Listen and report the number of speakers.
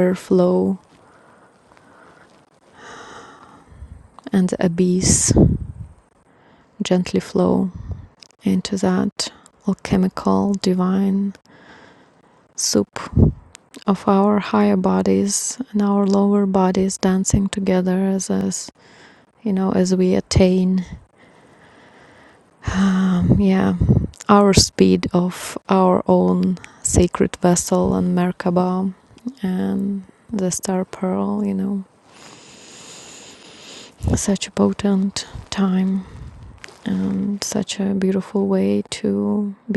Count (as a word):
one